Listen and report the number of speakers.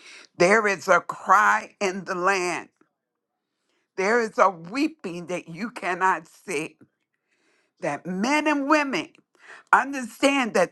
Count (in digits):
1